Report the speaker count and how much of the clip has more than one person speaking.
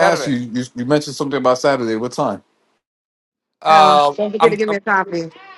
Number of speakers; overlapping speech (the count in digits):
3, about 16%